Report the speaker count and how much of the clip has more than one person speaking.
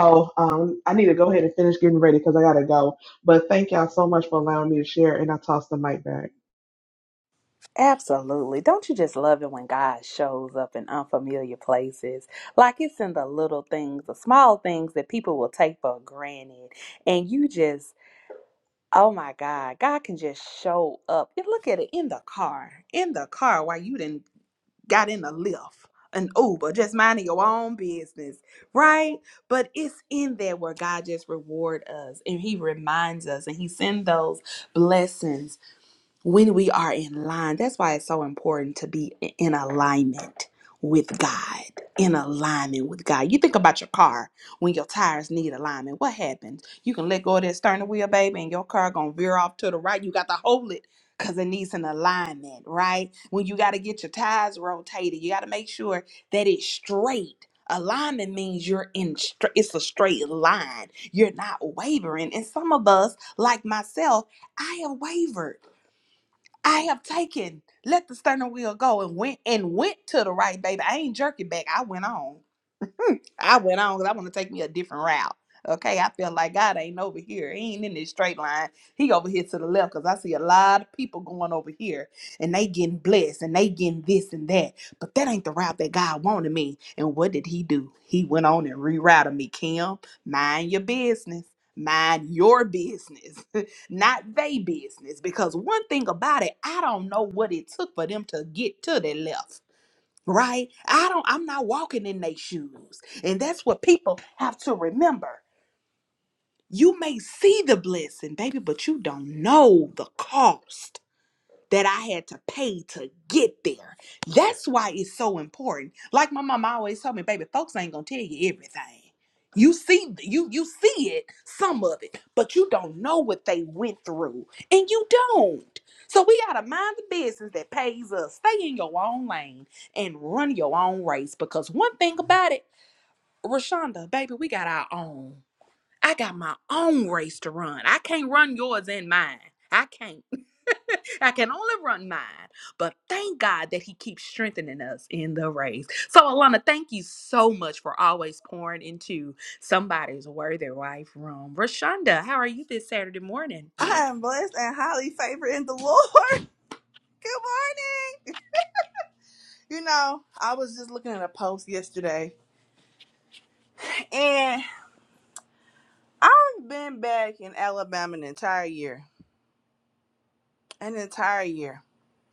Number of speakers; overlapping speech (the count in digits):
3, no overlap